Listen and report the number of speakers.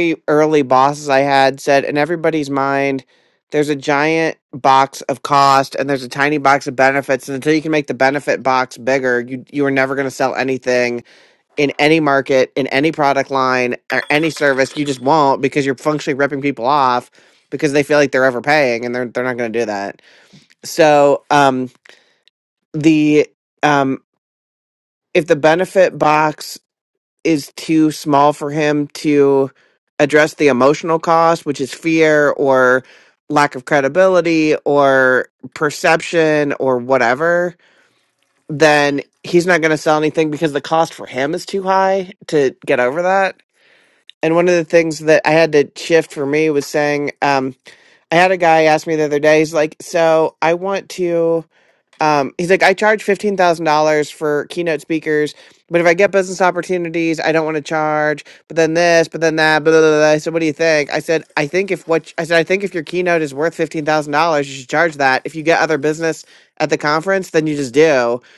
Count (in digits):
1